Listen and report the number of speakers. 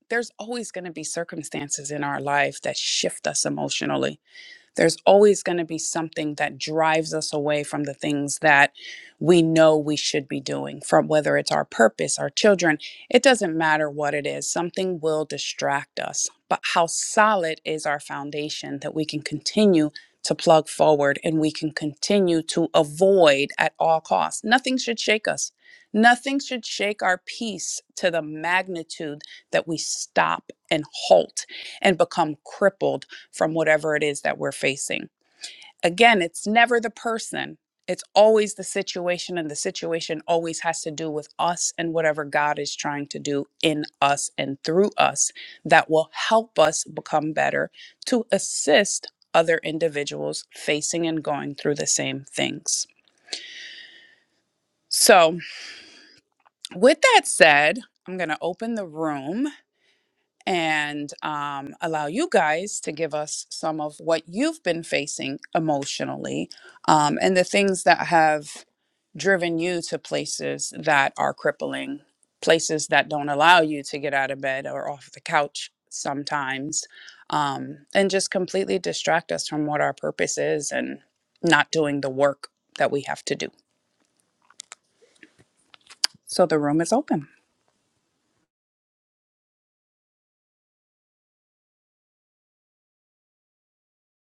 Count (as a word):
one